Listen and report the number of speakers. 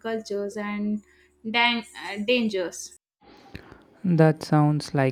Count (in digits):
2